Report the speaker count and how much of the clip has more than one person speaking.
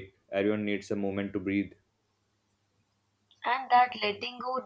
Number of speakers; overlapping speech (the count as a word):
two, no overlap